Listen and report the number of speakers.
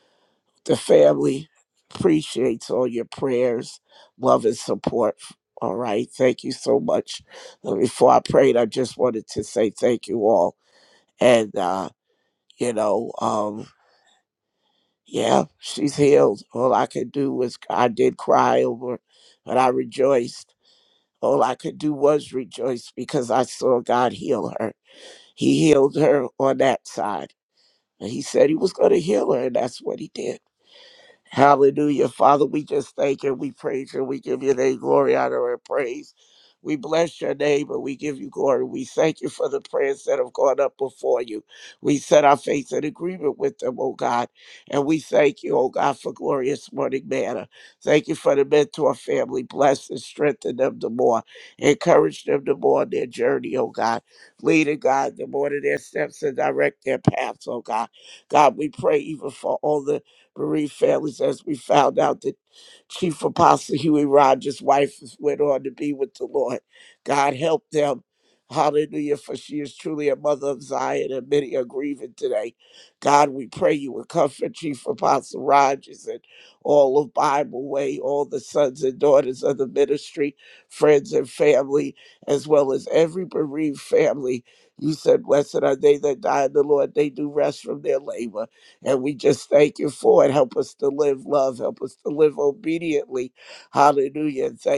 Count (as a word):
one